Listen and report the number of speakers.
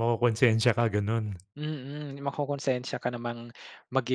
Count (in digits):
2